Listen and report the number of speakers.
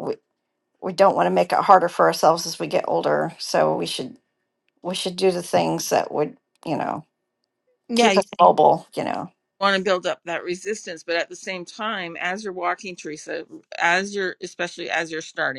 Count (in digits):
2